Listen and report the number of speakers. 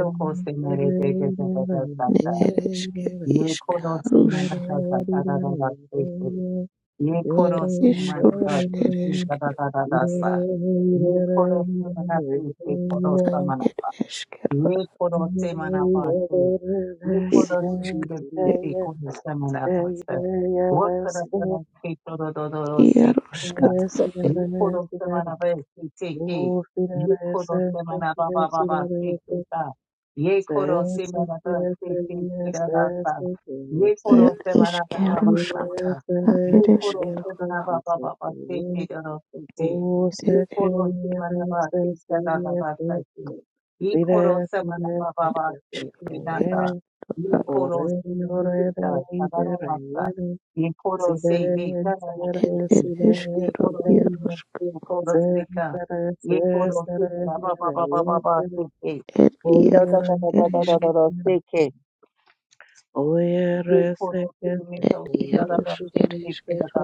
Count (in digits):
3